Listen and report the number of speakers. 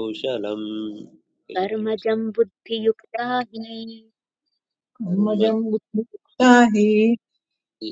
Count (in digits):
3